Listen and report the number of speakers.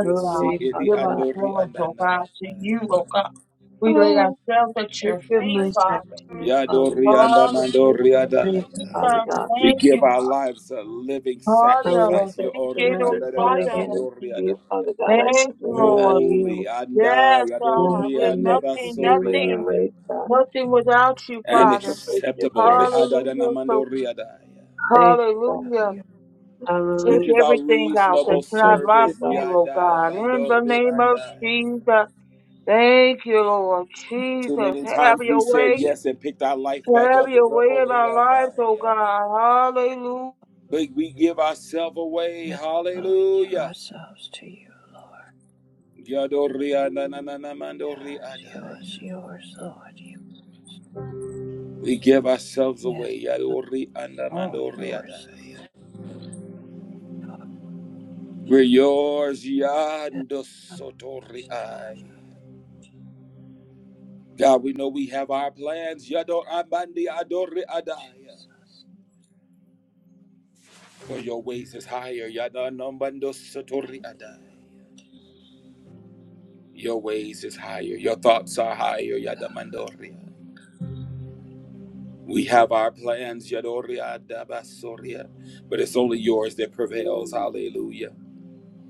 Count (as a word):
four